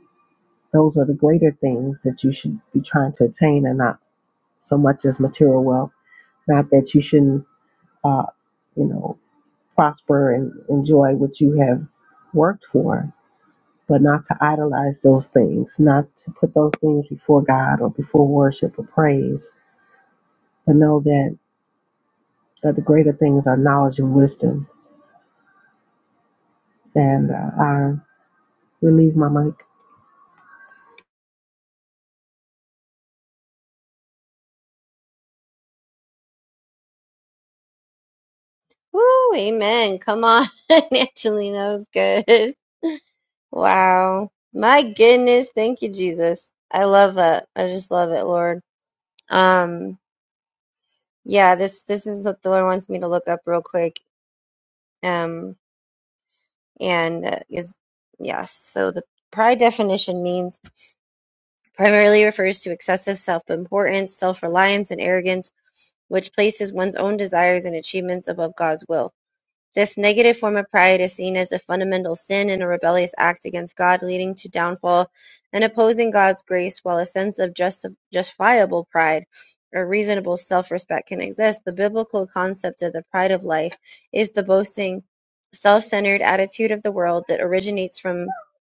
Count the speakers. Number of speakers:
2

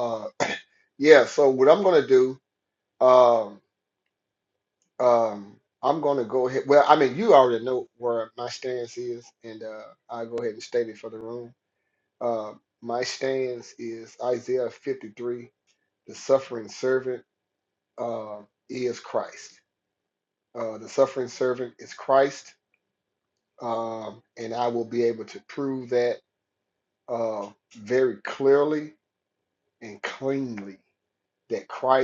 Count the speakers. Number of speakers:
1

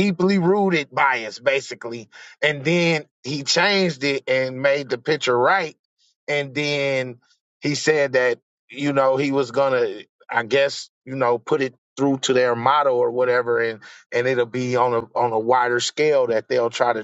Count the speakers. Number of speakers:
1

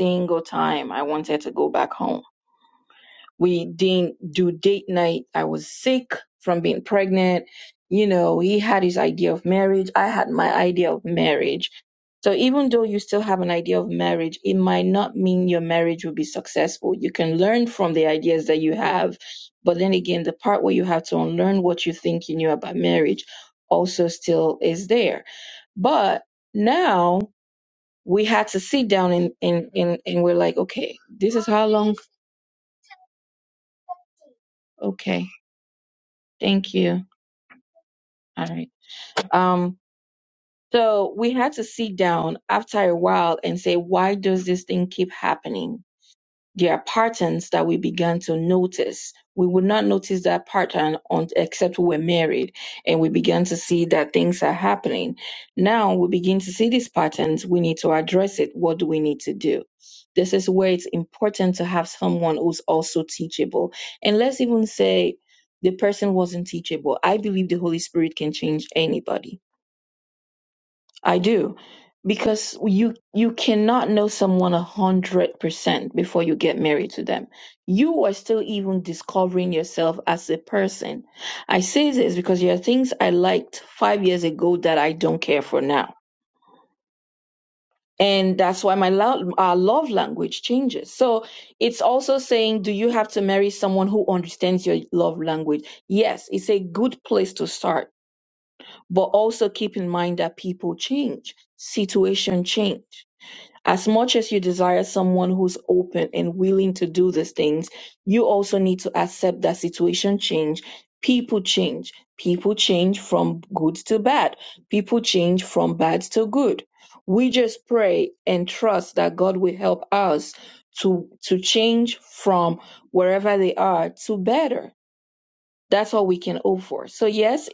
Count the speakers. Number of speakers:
1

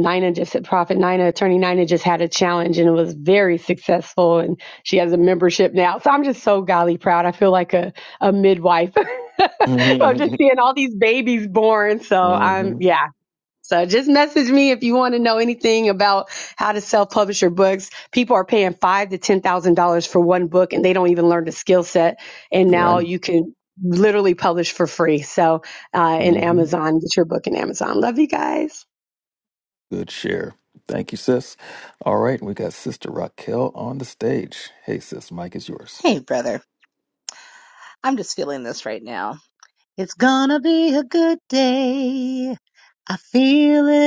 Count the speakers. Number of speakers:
3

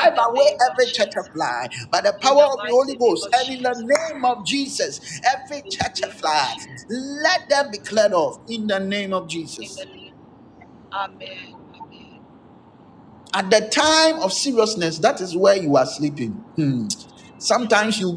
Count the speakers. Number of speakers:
2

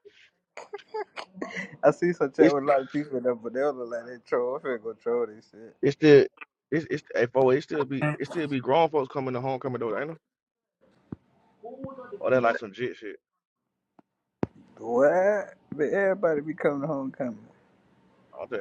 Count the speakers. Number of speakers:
2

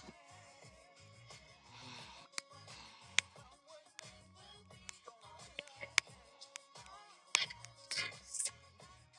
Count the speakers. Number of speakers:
0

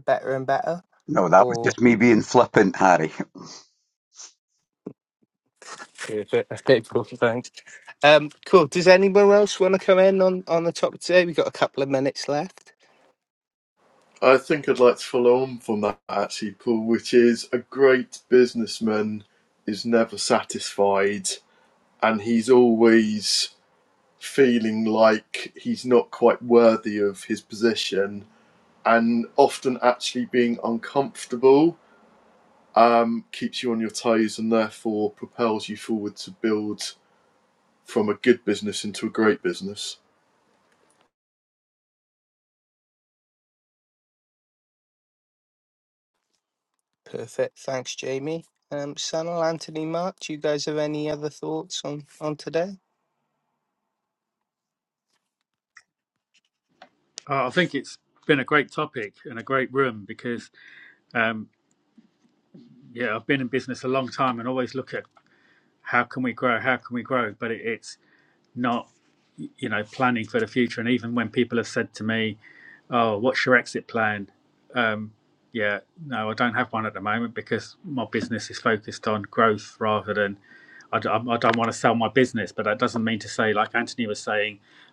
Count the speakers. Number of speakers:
4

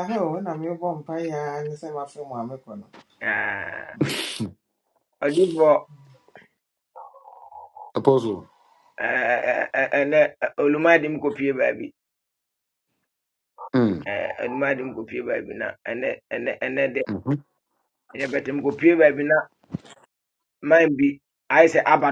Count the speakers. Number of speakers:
3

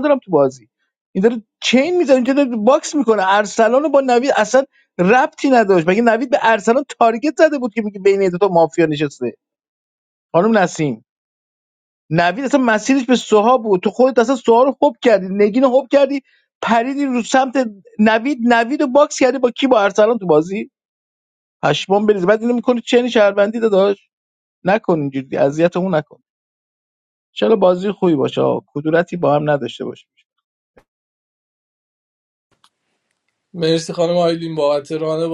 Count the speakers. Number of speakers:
2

